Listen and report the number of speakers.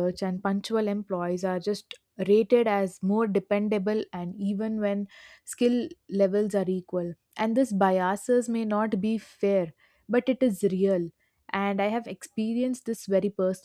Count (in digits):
1